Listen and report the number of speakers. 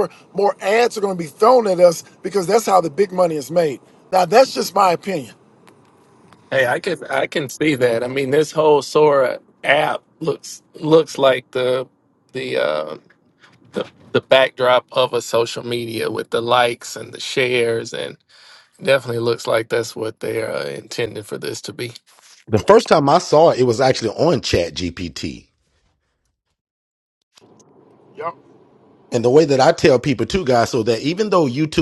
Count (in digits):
3